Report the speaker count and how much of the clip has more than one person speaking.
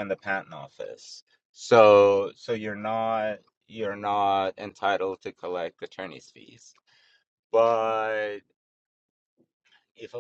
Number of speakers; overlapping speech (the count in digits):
1, no overlap